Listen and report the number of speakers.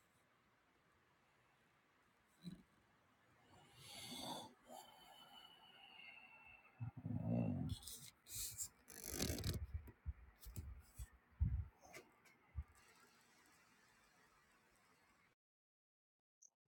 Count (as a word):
zero